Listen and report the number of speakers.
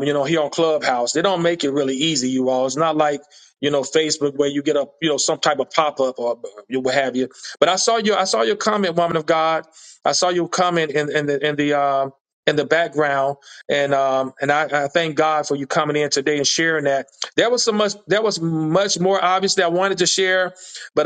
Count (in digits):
1